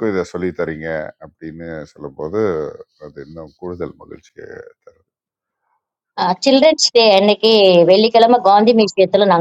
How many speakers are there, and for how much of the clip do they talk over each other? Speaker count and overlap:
2, no overlap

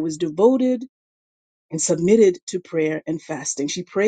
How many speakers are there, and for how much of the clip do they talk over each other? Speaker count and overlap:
1, no overlap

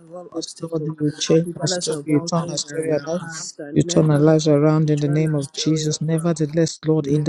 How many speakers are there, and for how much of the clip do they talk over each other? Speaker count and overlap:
2, about 72%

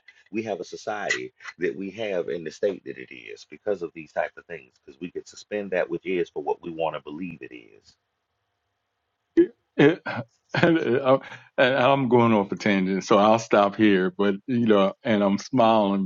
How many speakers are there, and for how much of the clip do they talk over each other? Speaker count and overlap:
2, no overlap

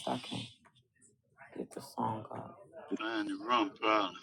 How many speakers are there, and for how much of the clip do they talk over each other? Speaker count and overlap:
2, no overlap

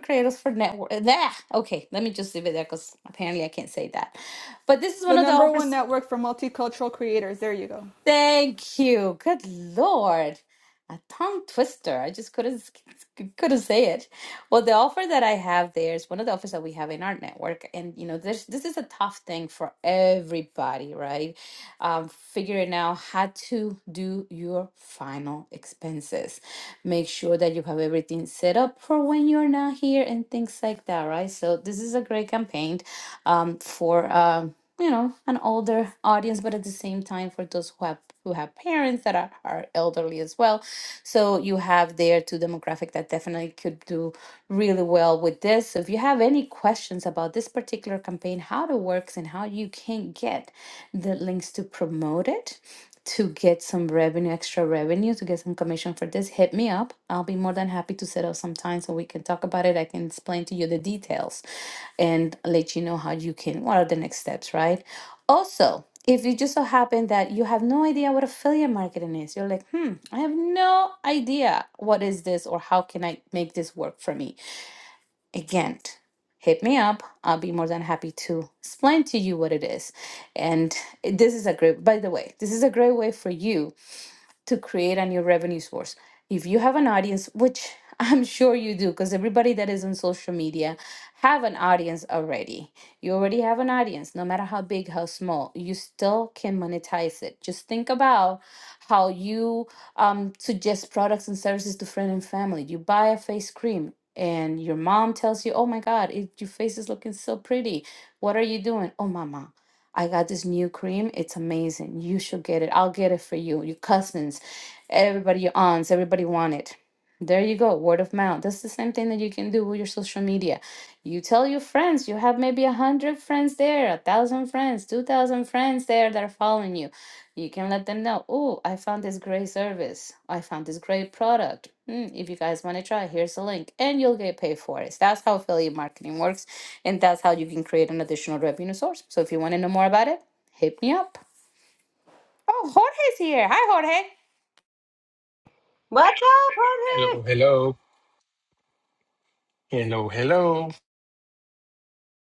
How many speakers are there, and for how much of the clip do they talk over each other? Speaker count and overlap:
4, about 1%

